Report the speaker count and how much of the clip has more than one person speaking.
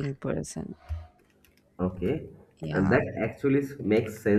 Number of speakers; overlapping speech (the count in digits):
2, about 7%